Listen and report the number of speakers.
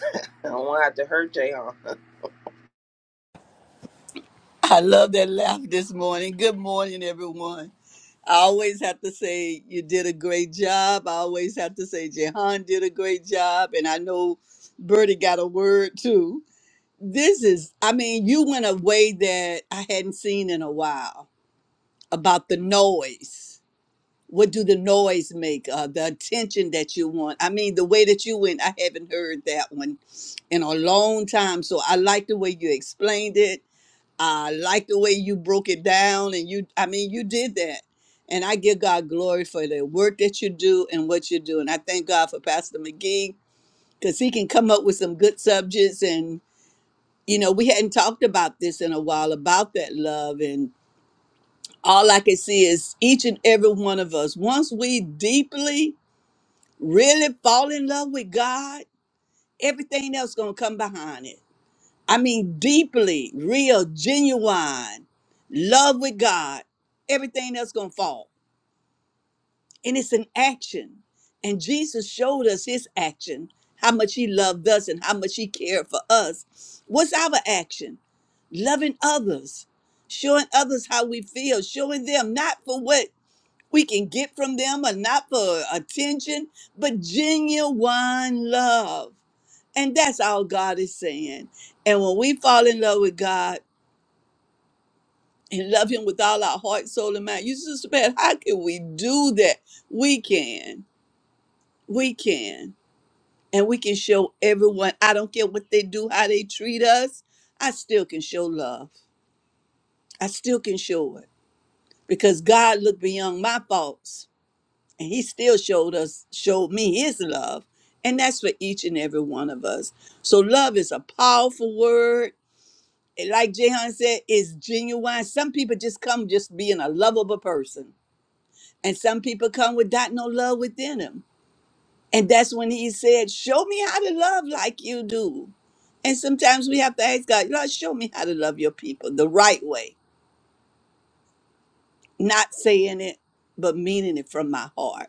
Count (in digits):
2